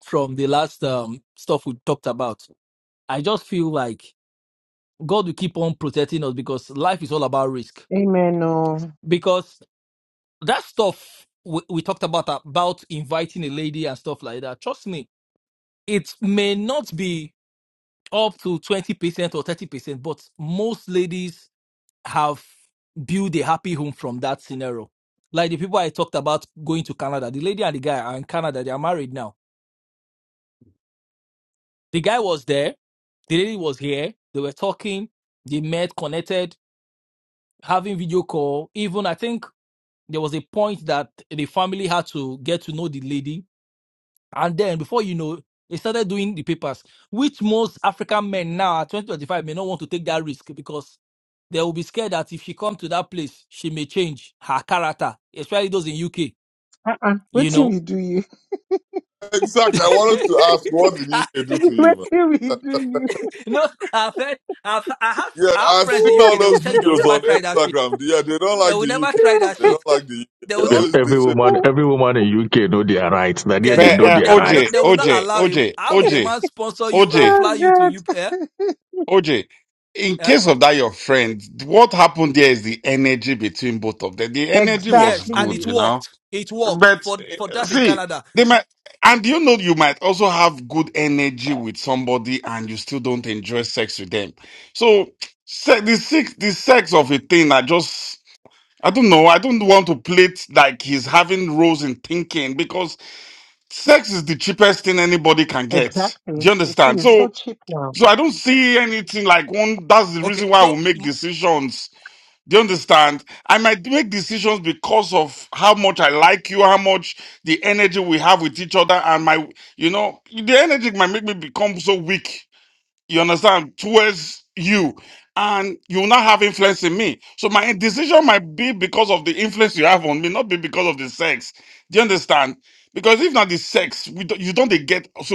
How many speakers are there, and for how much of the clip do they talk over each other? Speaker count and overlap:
5, about 11%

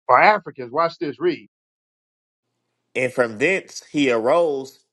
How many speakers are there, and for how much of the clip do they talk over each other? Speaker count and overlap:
2, no overlap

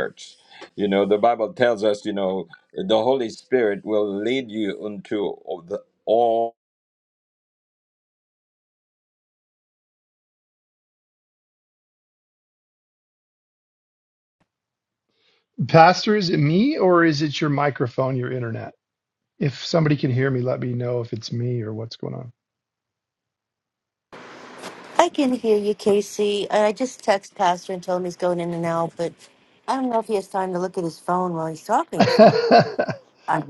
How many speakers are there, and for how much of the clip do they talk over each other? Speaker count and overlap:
3, about 1%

